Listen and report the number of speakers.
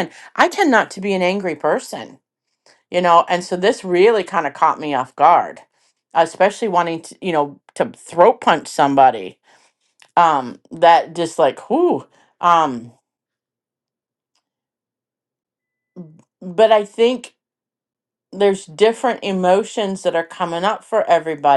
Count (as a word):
one